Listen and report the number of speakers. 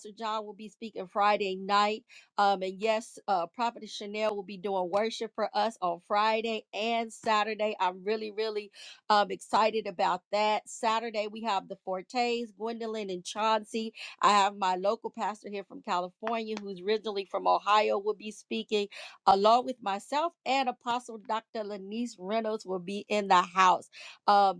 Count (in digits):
1